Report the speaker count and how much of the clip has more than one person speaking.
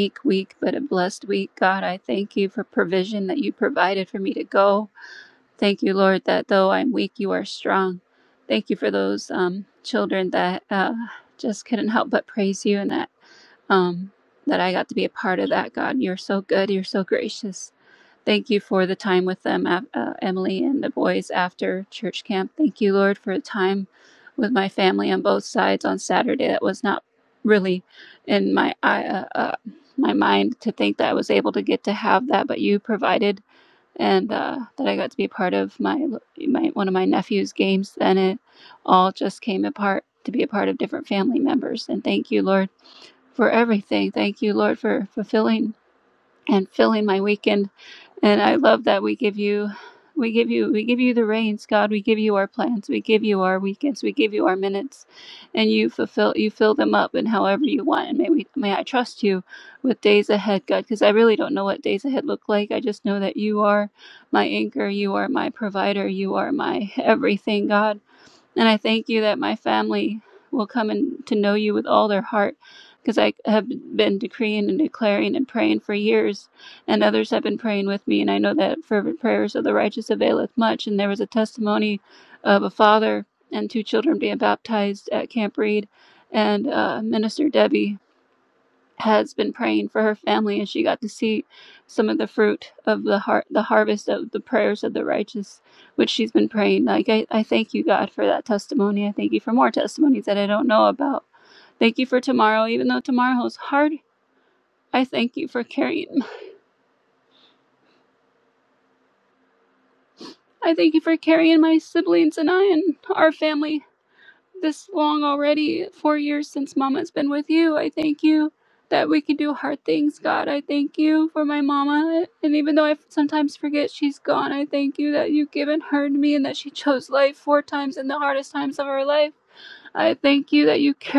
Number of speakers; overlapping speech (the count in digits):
1, no overlap